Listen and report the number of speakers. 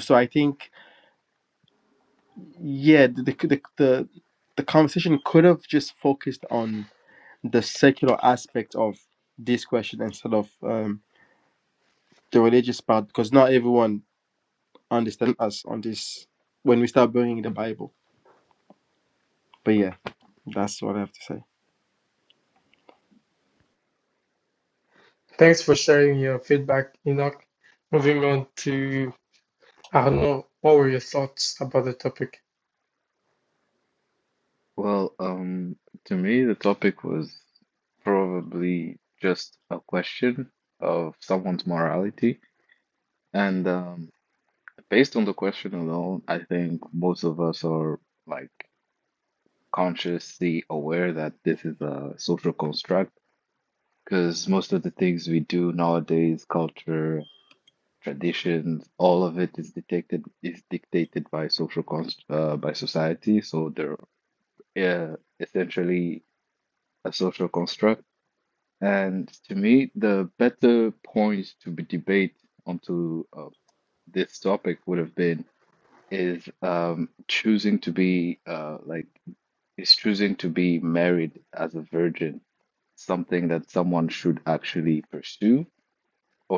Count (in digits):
3